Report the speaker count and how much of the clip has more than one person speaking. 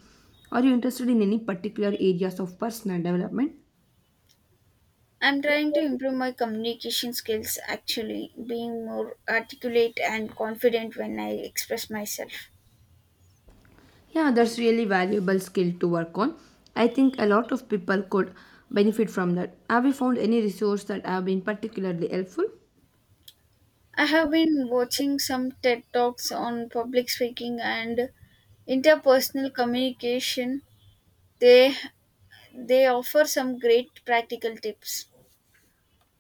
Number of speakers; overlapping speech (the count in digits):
2, no overlap